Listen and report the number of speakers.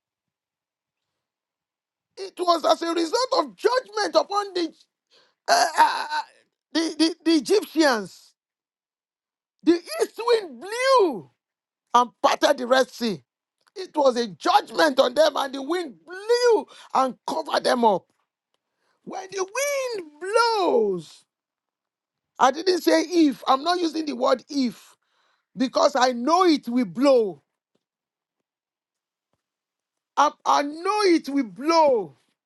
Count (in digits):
1